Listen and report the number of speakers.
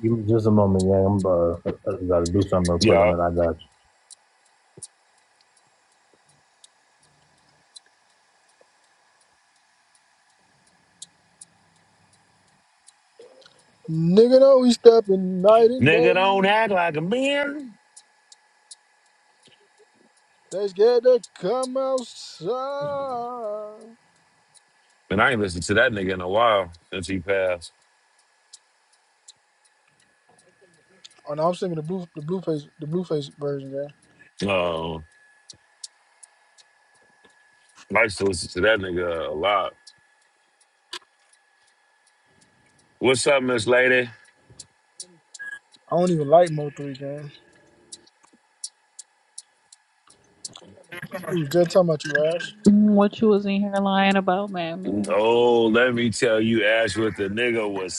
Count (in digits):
4